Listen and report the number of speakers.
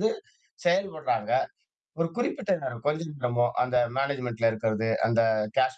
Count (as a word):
one